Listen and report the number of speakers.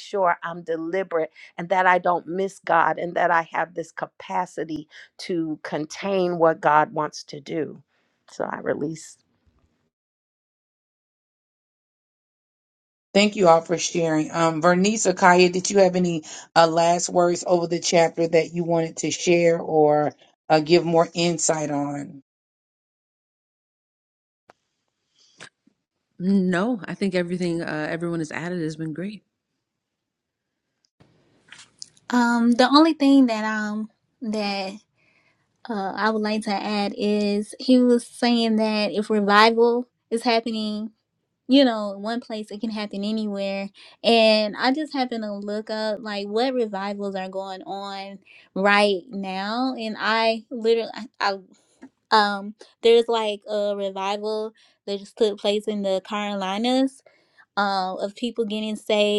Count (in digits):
4